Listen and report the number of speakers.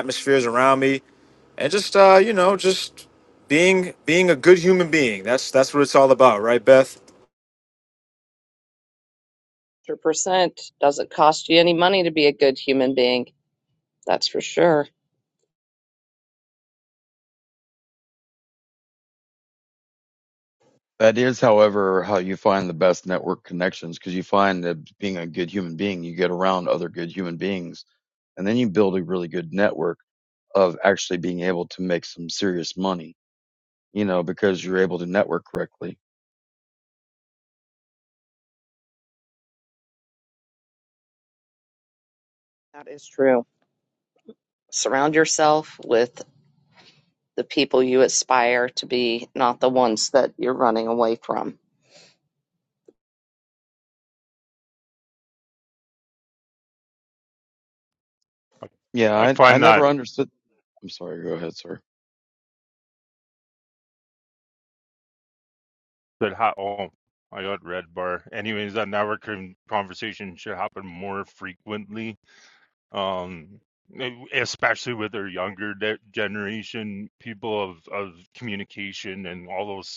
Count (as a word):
four